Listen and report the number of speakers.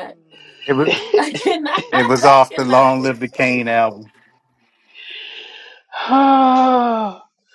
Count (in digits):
3